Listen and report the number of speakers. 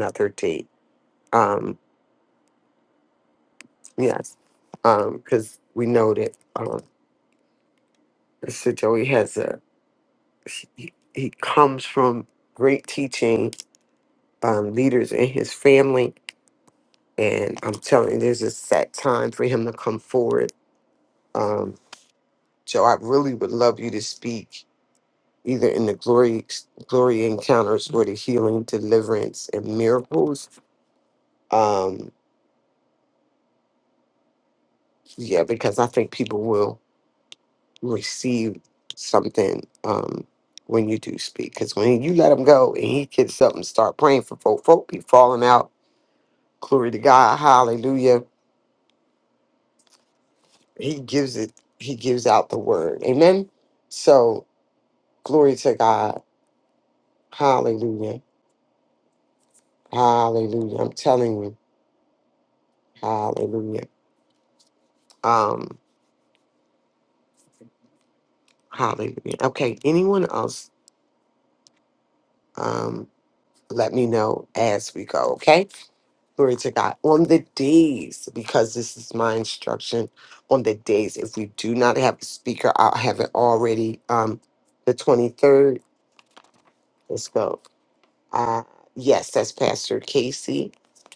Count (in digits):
1